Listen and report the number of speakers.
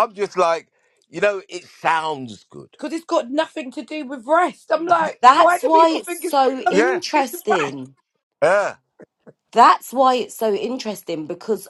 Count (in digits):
3